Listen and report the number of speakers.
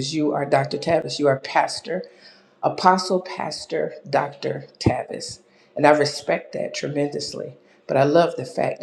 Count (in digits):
1